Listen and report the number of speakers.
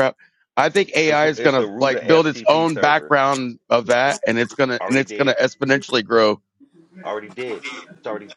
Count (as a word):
two